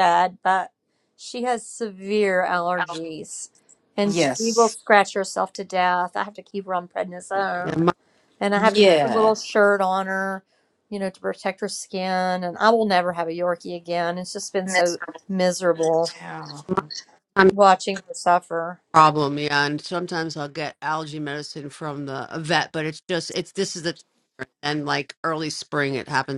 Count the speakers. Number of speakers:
3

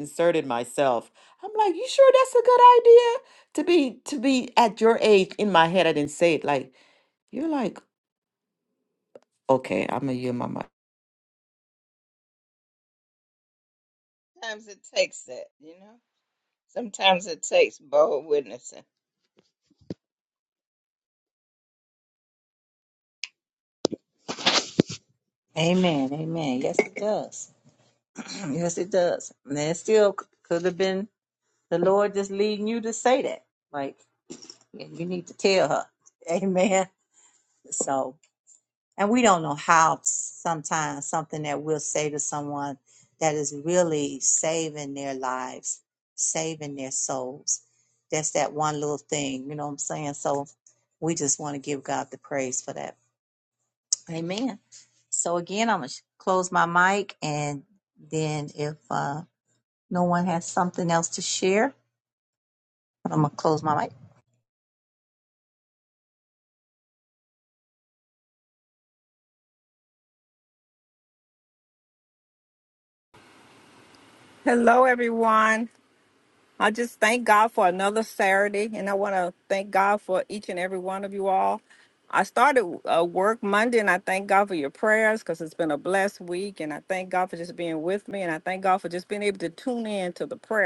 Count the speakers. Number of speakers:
4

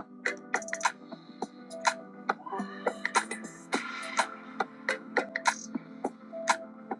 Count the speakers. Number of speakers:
0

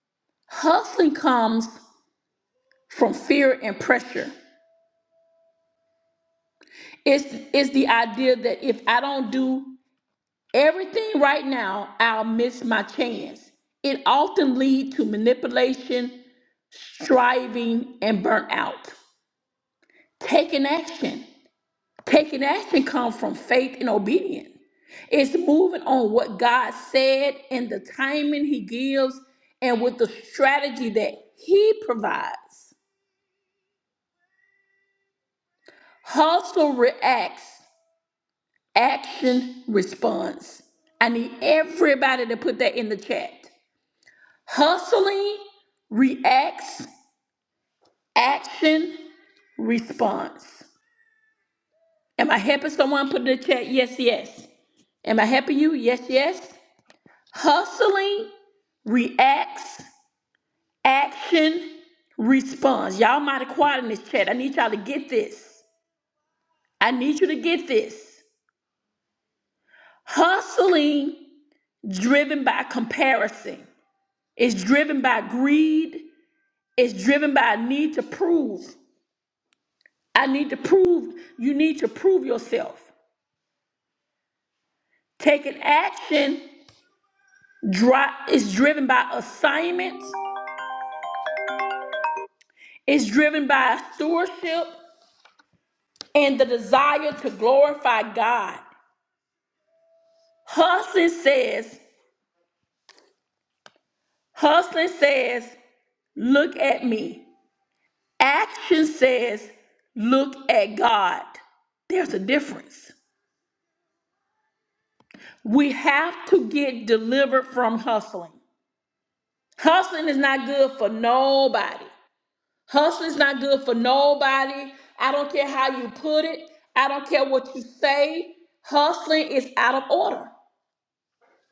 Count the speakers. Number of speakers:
1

